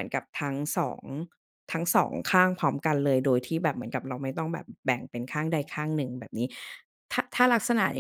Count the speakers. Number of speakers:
1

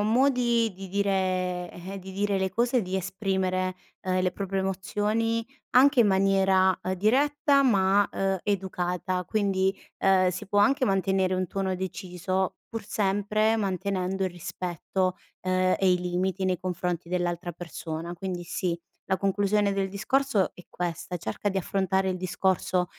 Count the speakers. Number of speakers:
1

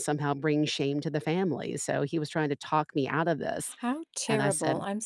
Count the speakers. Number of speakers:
2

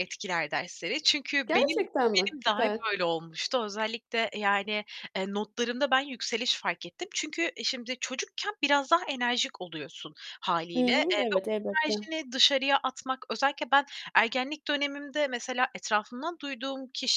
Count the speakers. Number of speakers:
2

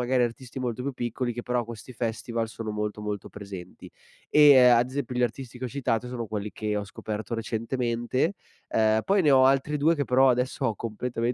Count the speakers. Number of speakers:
1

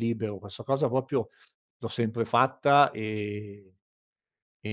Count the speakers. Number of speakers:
1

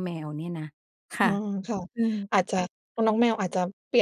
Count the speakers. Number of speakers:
2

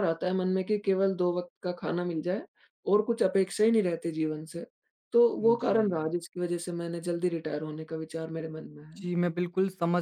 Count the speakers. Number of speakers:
2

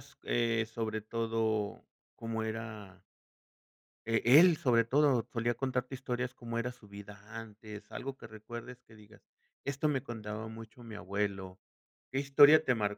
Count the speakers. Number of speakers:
1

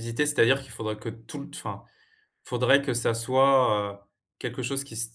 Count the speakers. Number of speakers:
1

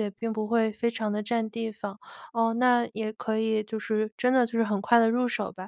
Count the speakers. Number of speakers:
1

